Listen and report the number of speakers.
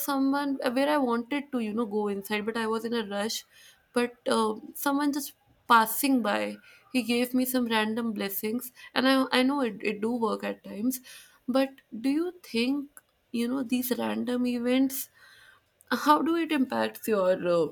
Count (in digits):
1